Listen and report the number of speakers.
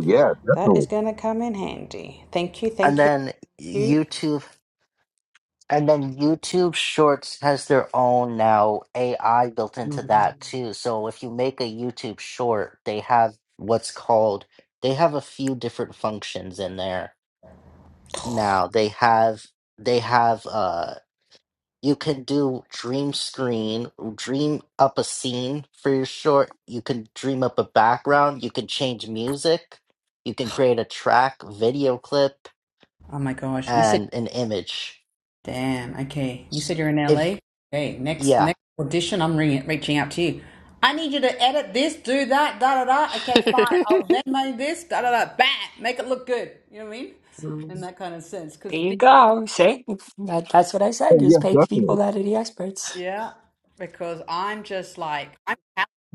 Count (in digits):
4